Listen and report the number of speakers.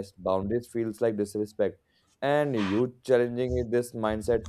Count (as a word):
one